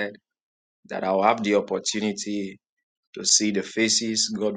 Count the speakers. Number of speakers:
1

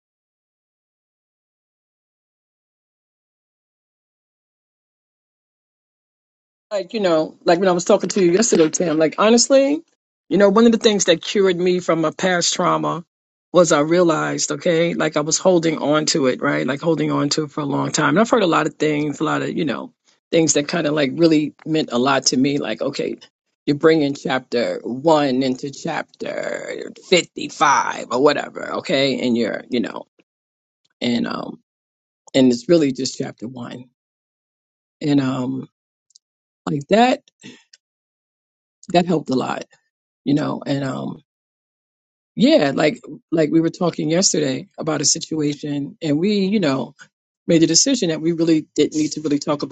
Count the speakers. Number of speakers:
1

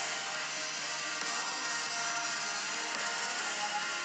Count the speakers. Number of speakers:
0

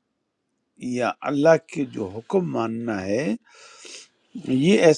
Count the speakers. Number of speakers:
1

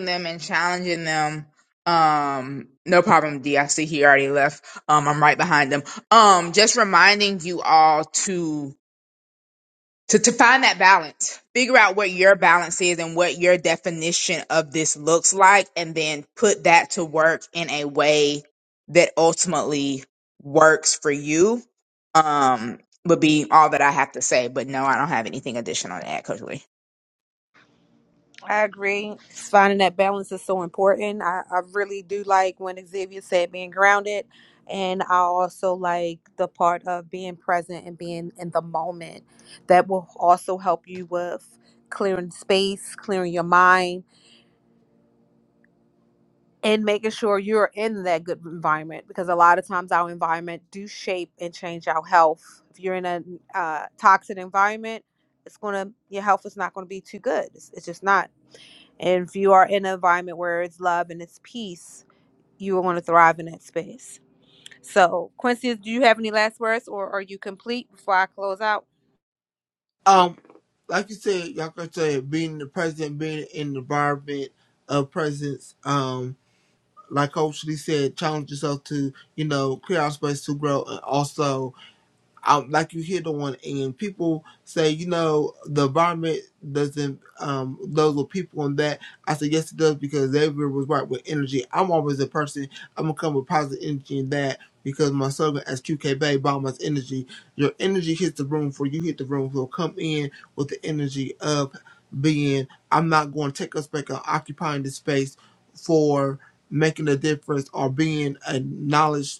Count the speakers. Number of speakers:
3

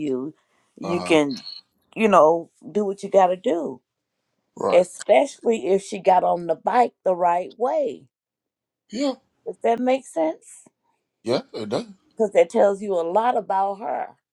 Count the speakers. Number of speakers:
2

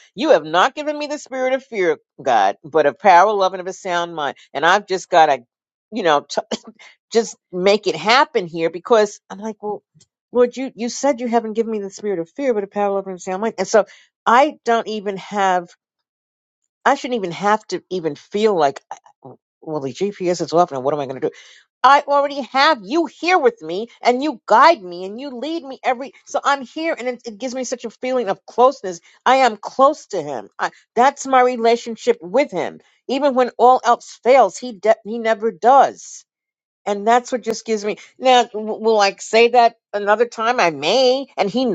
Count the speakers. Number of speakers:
1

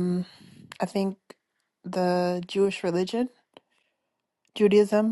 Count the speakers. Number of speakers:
1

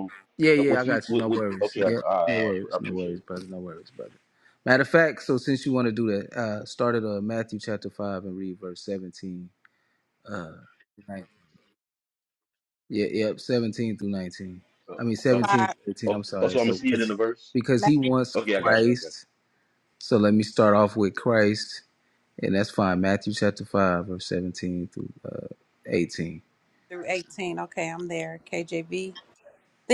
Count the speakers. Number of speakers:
3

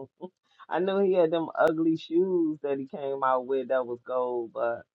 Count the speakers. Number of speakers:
1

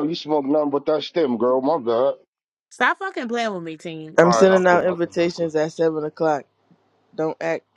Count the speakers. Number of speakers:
3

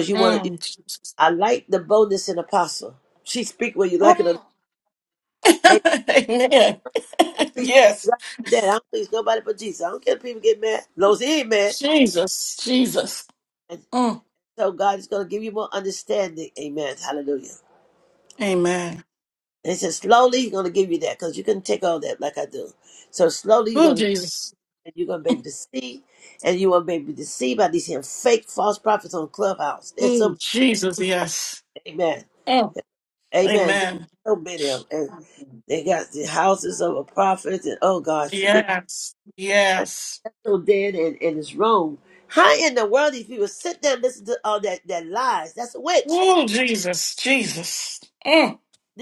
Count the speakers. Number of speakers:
2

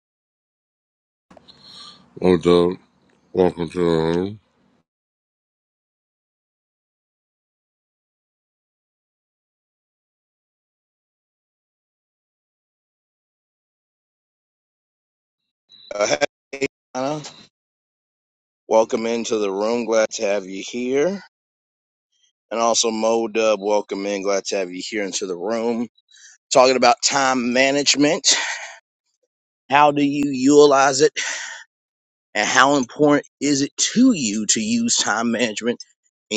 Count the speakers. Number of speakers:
2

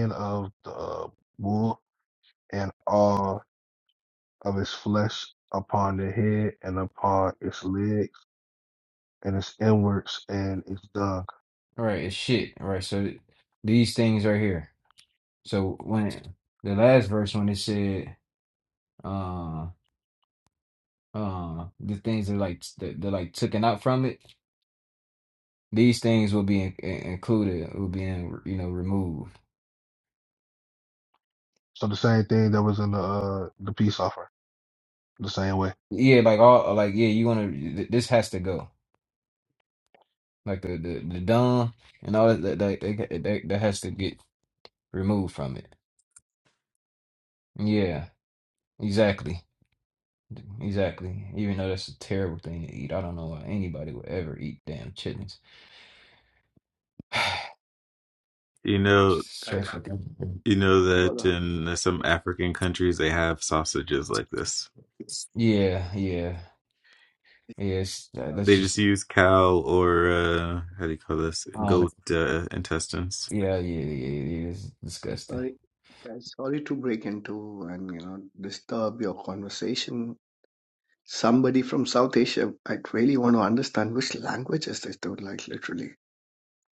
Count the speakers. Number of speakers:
4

